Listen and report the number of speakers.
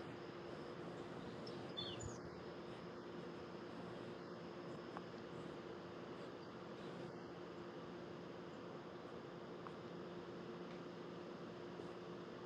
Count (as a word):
zero